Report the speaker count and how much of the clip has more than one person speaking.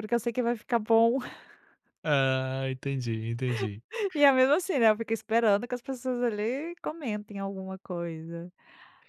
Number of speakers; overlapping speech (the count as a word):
two, no overlap